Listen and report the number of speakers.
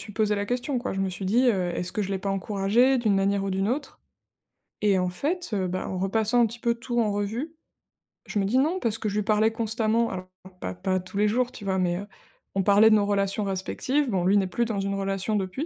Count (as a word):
one